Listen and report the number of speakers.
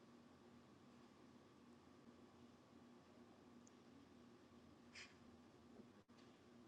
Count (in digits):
0